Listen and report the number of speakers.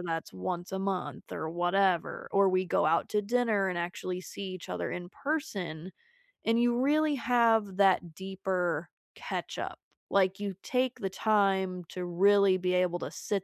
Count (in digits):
1